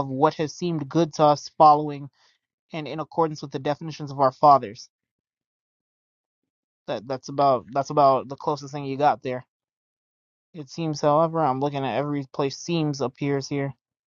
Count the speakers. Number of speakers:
one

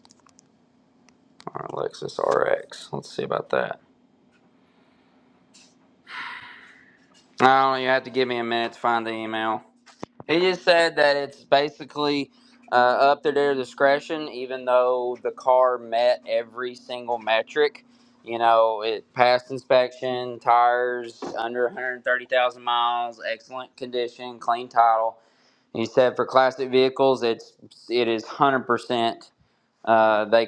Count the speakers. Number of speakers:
one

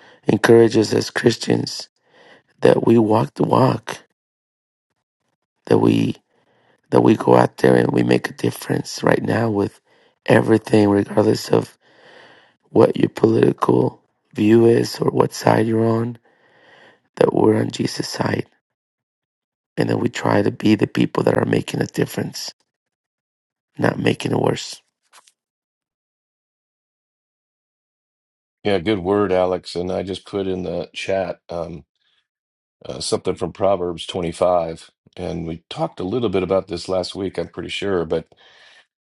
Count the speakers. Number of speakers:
two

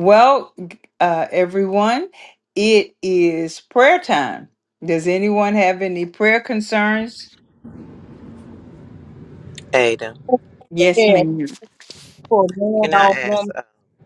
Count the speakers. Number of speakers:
three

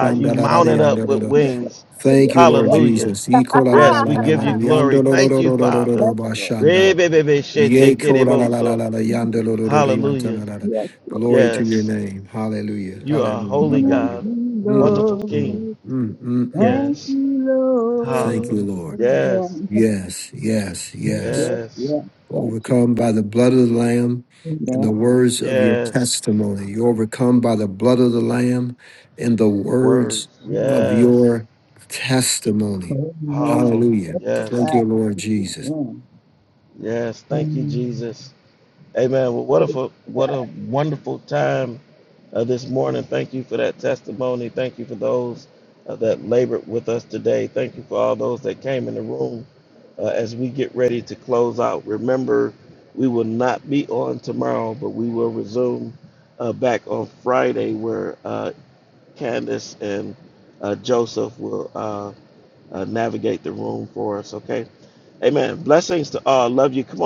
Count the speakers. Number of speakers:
three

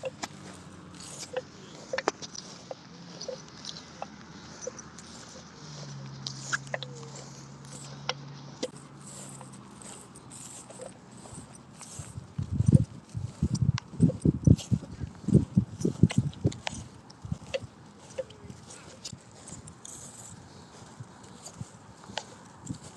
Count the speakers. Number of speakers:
zero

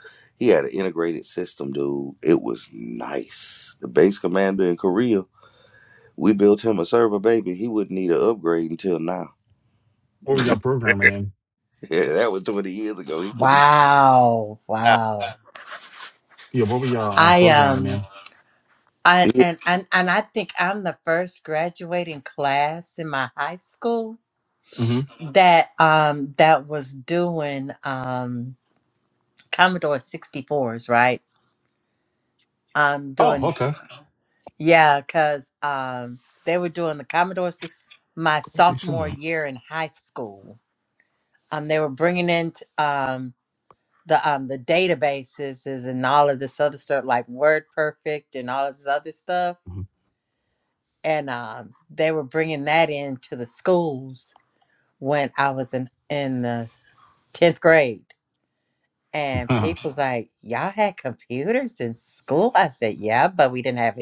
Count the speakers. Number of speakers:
three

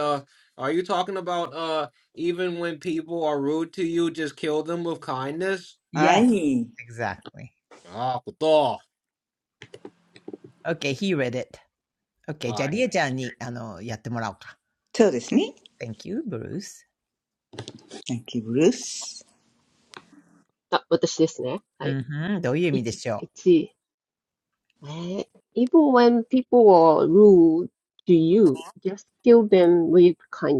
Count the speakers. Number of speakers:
four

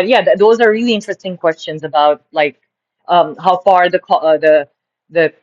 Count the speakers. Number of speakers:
one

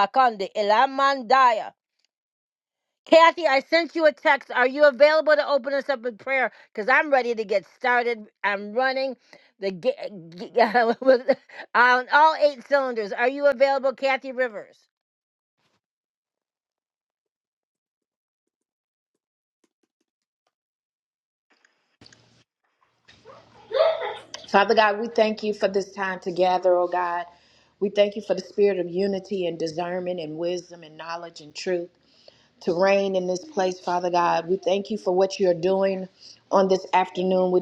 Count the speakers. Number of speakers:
two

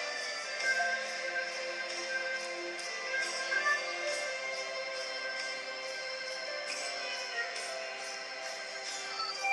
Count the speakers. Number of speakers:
zero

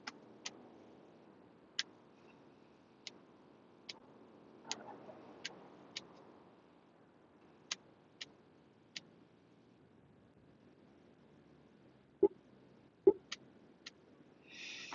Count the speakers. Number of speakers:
zero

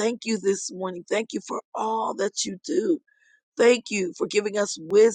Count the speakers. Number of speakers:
one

